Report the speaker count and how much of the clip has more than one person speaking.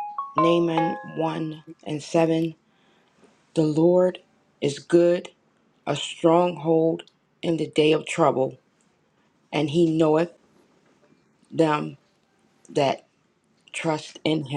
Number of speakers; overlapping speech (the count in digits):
1, no overlap